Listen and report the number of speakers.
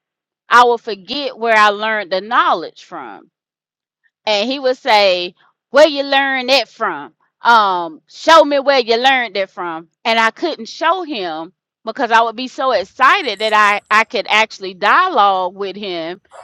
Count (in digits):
1